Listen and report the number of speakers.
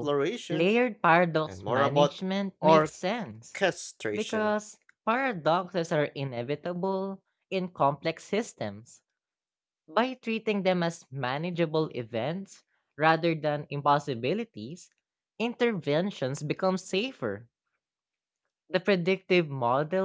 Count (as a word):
two